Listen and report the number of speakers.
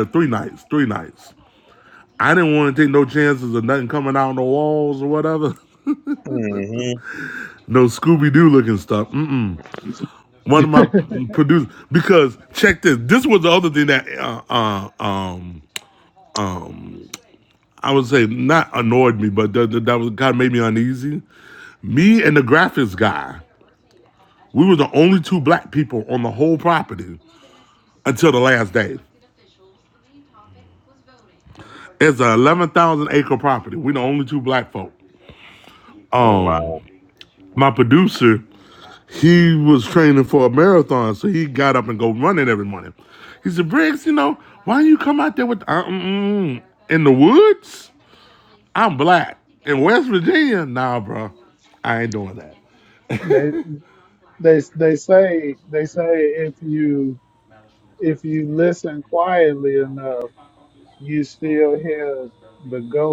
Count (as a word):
three